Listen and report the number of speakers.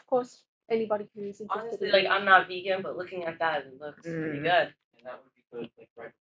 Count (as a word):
three